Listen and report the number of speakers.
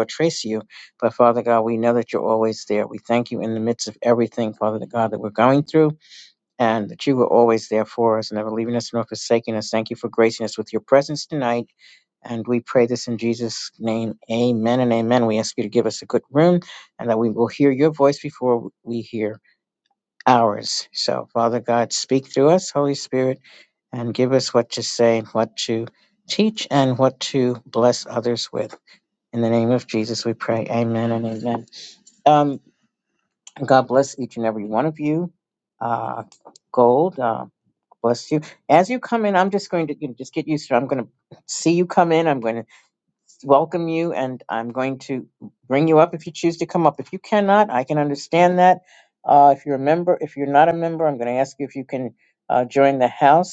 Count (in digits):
1